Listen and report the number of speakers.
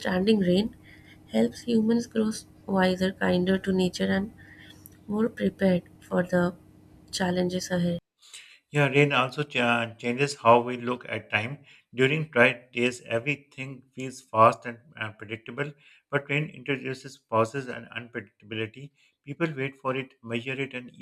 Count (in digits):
2